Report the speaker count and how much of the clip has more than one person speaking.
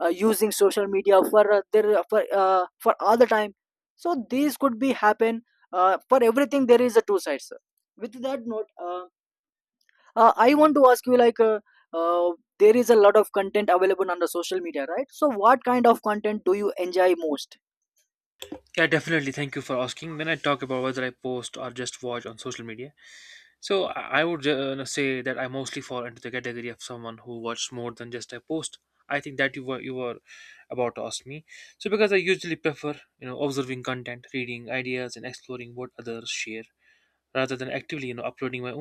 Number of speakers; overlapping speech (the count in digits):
2, no overlap